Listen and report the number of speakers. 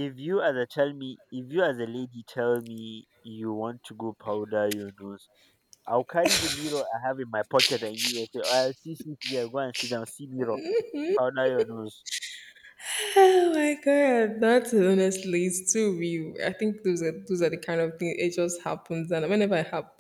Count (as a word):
two